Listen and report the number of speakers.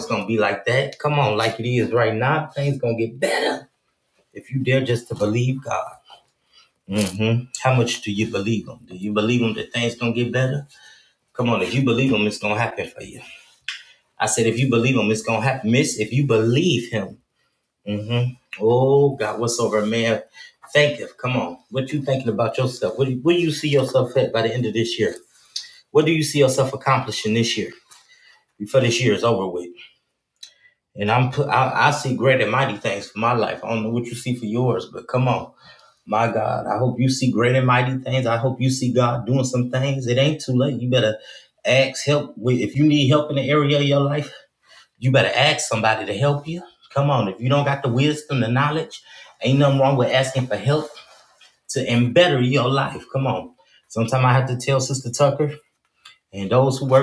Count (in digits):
1